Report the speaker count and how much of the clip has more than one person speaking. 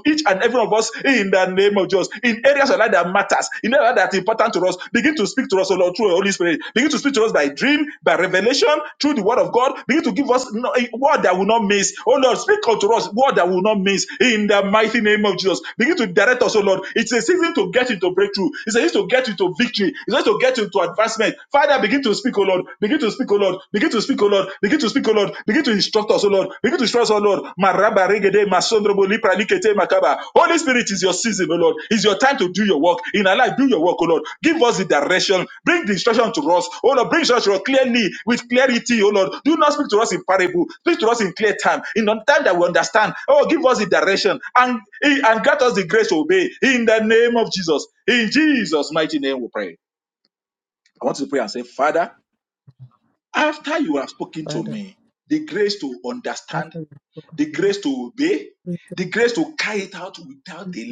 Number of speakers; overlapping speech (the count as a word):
two, about 2%